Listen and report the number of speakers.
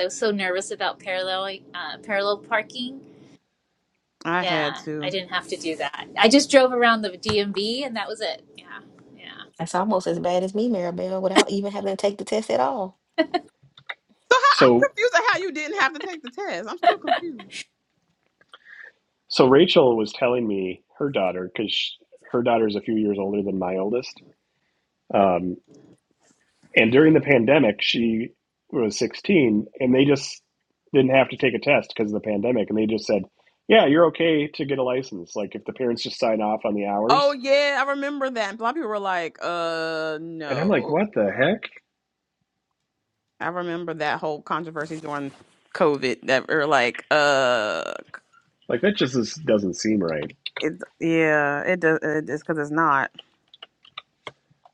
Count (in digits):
4